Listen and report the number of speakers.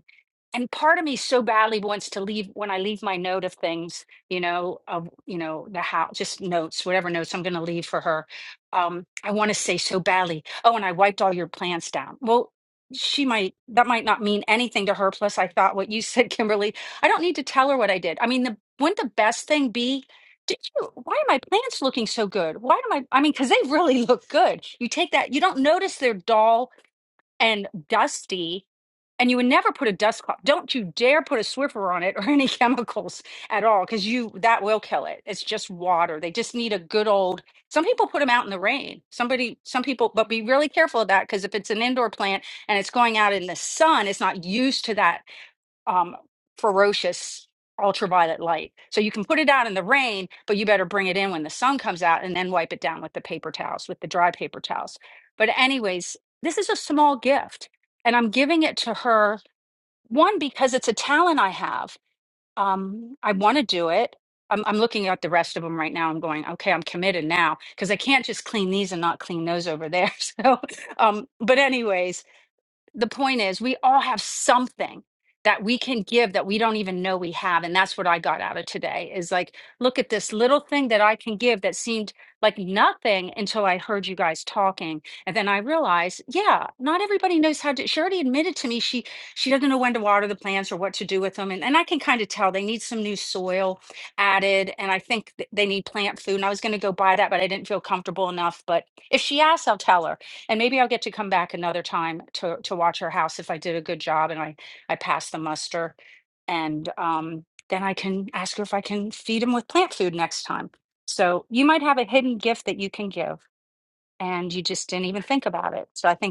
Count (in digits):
1